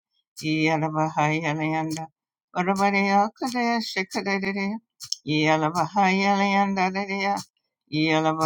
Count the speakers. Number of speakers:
1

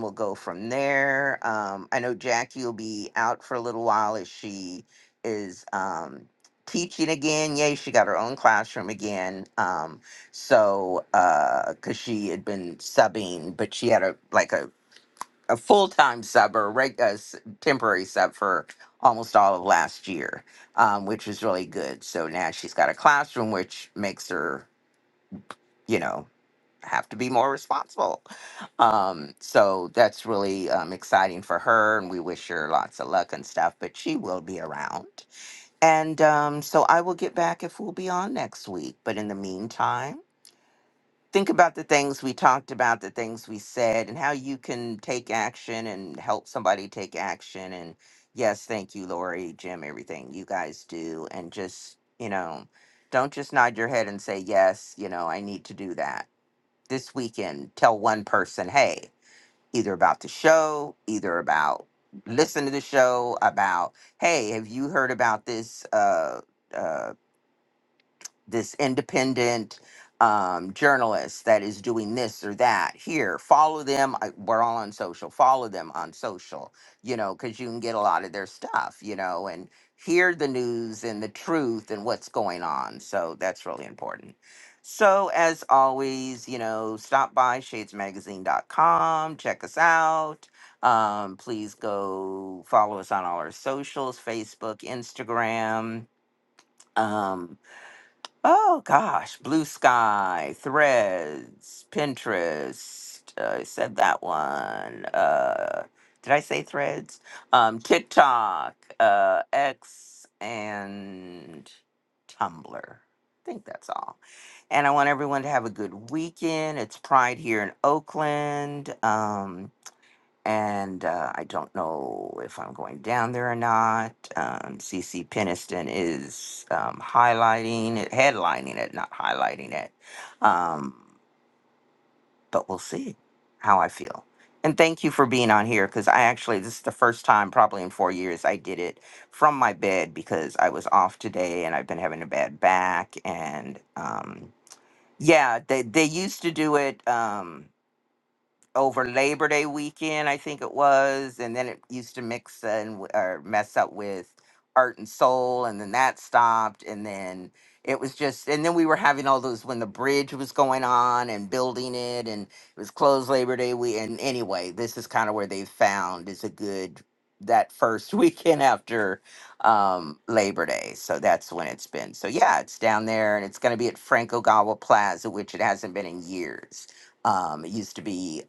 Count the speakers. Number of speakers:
1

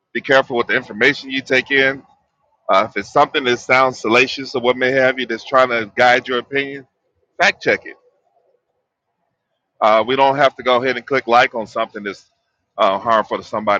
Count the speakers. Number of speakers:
1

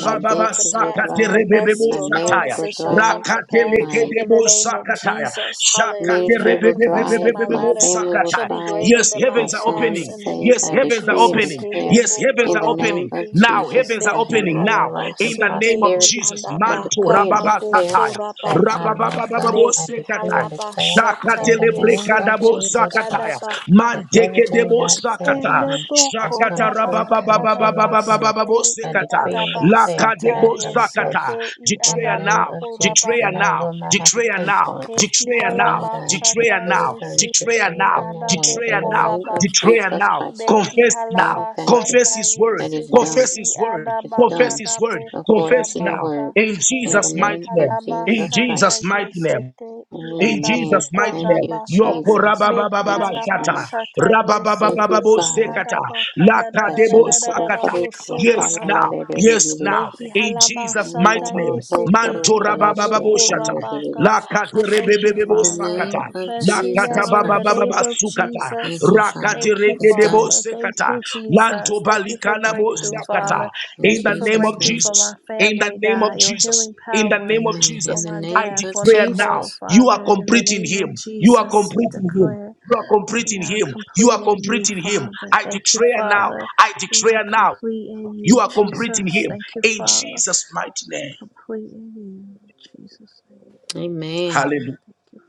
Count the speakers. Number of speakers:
3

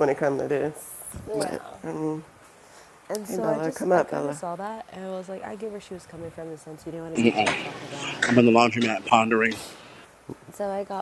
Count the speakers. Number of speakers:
3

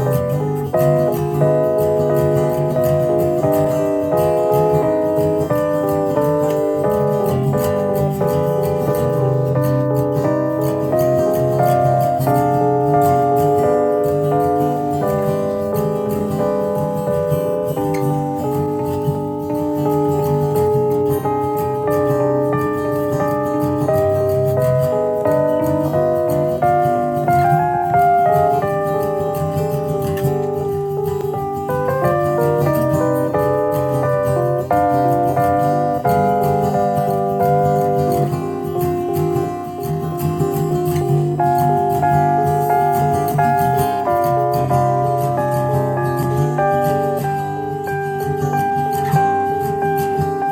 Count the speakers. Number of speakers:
0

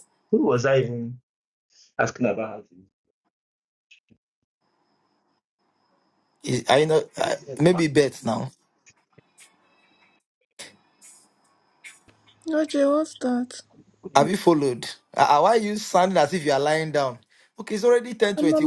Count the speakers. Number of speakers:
3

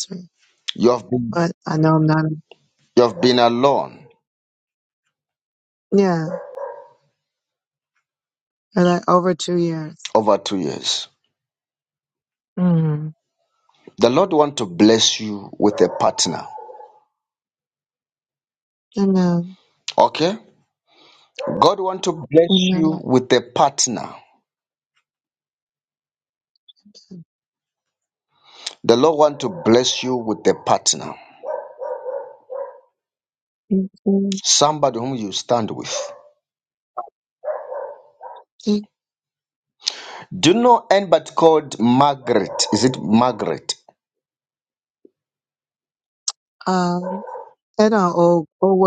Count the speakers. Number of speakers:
2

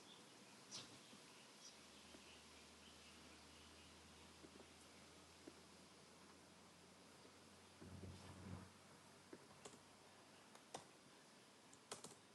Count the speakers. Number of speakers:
0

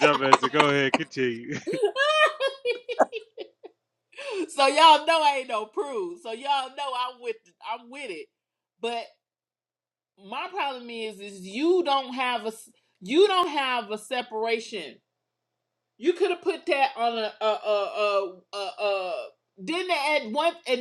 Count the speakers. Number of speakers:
2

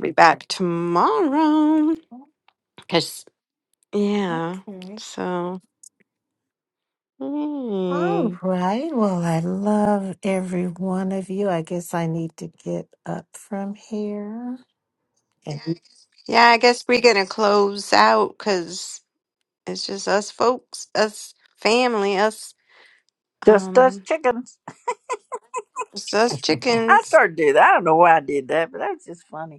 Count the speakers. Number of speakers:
3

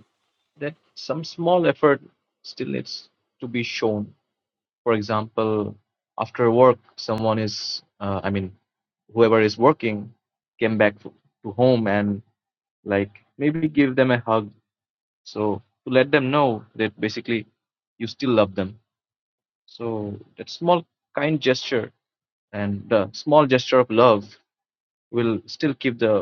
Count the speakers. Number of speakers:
1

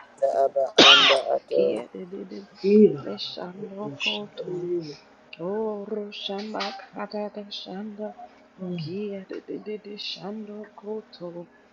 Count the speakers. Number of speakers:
3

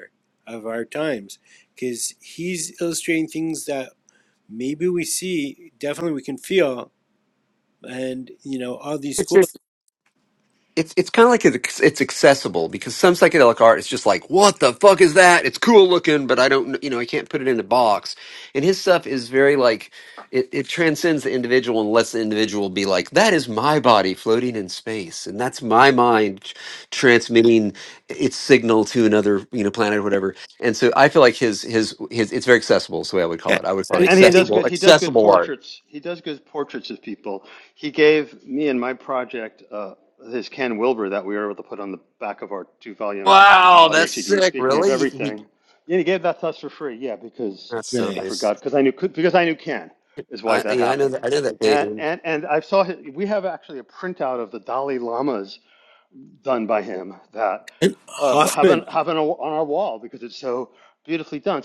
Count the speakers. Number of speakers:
3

